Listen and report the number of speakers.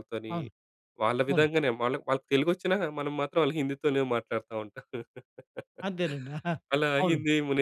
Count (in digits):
2